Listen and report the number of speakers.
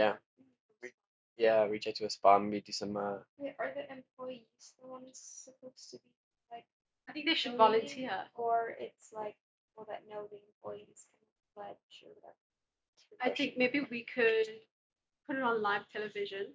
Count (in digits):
3